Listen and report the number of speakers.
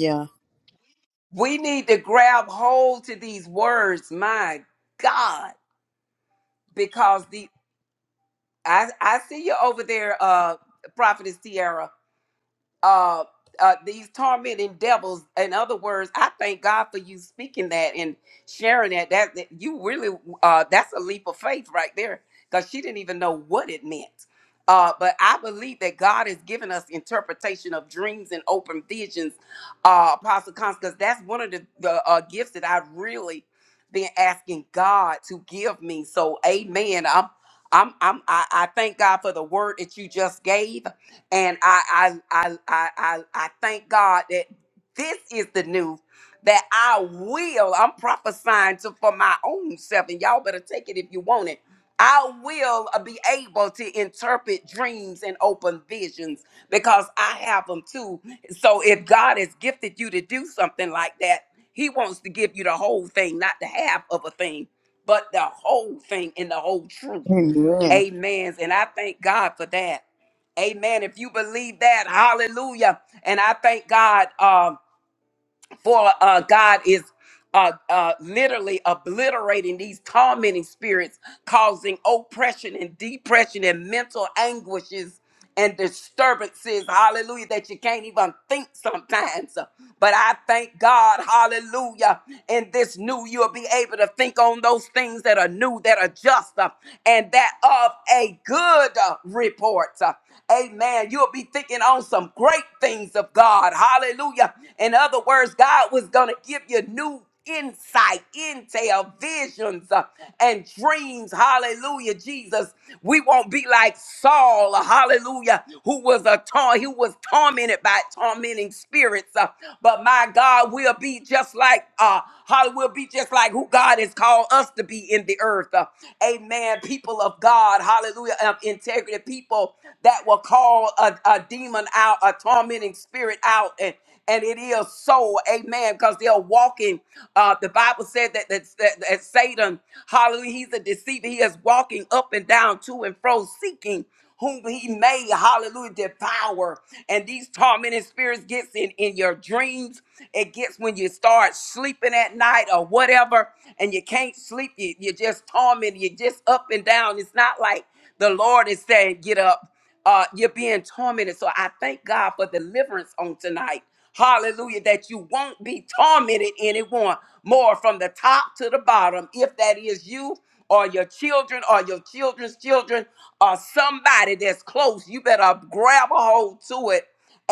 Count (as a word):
two